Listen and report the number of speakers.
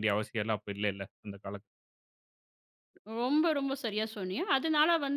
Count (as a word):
two